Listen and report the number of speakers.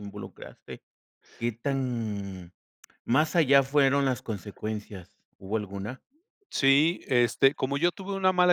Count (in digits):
2